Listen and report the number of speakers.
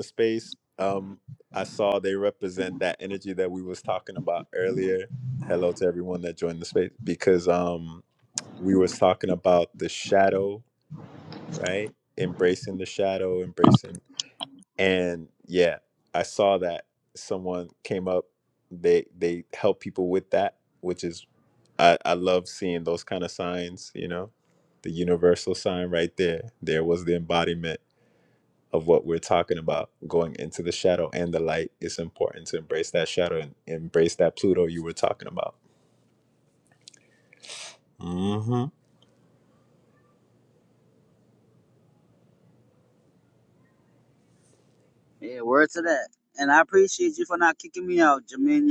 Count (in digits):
2